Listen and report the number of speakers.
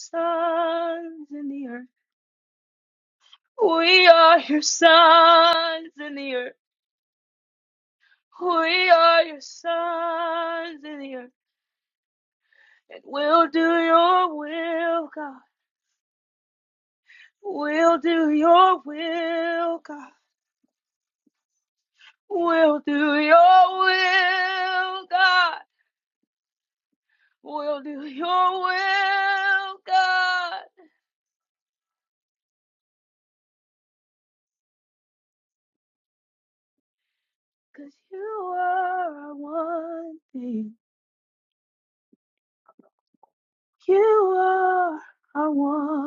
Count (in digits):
1